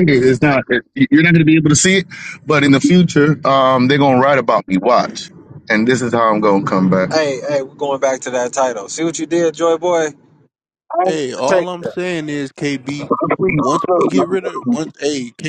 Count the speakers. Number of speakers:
3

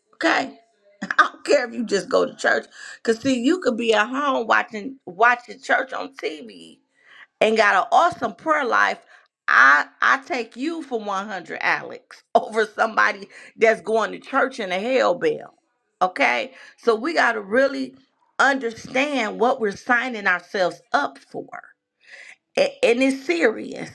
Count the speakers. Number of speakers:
1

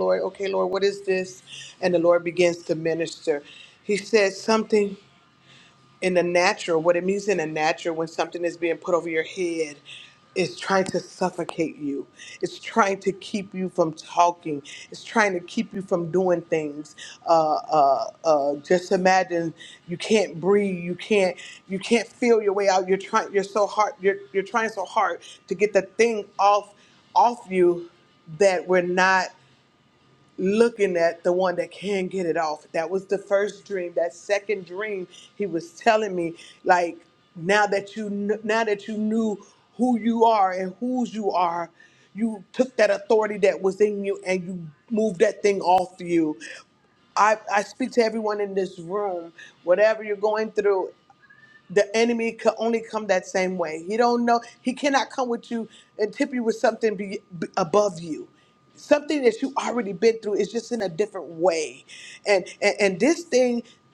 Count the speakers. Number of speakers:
1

